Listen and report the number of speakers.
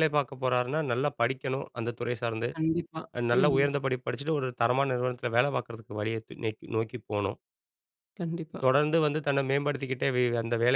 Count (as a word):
two